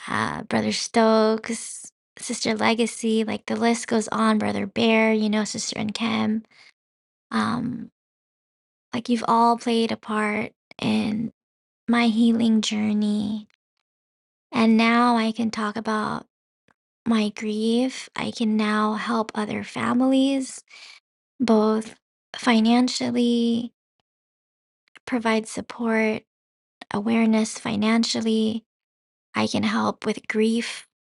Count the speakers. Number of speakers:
one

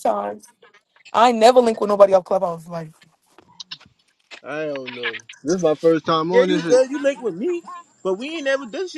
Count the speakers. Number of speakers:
three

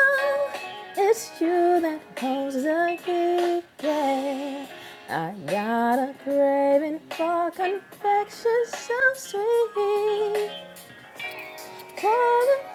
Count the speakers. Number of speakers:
one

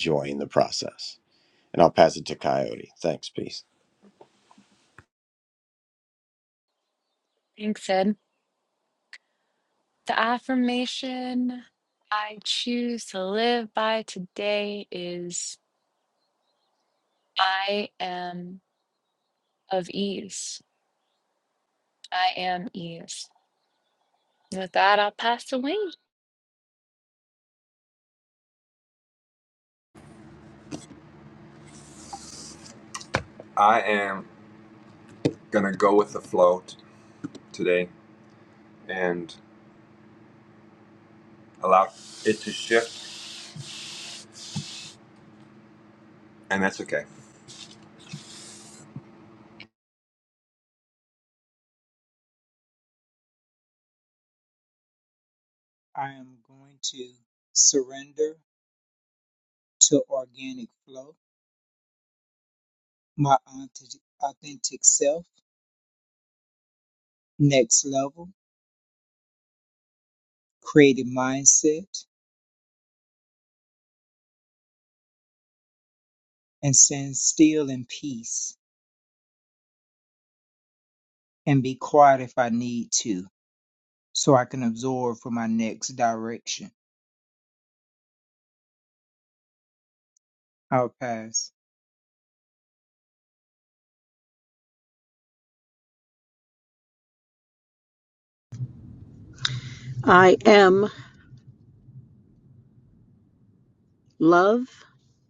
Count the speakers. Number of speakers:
five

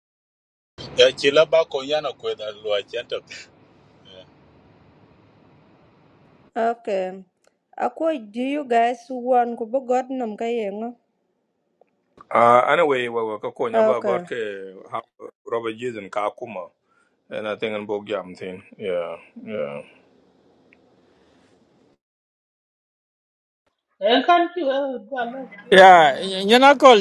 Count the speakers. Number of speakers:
five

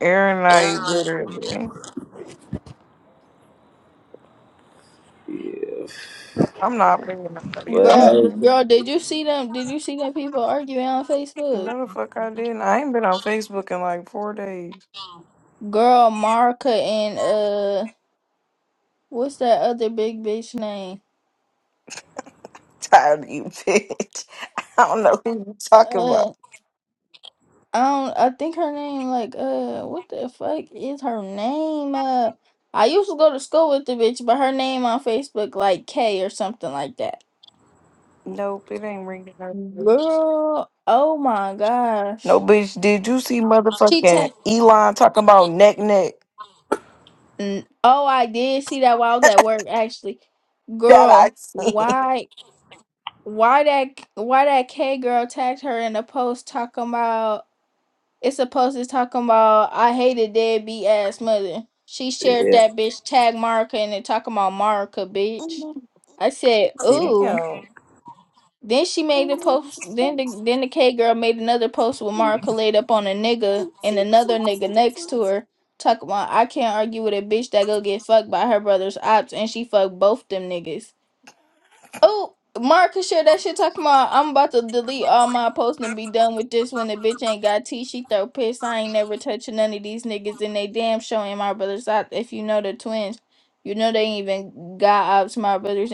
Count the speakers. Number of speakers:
three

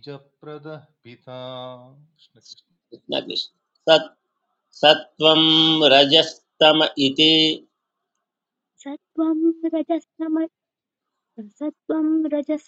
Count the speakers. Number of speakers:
three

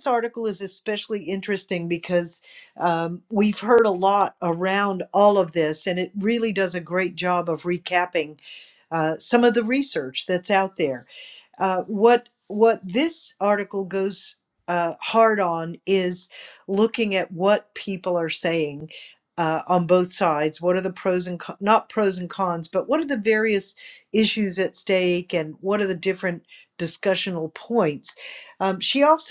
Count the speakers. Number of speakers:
one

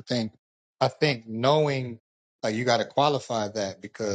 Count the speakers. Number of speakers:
one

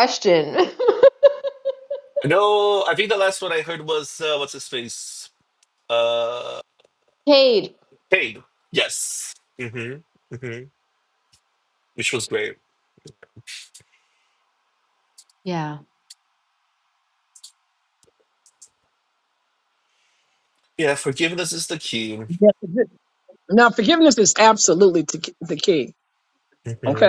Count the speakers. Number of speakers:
three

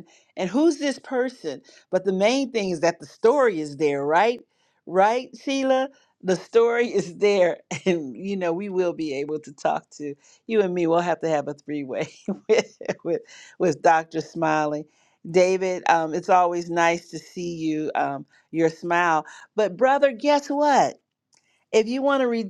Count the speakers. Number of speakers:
one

